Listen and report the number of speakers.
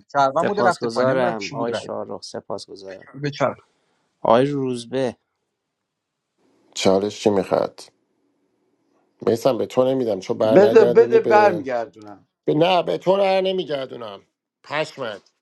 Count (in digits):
4